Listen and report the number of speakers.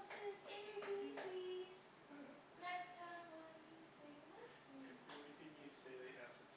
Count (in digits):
2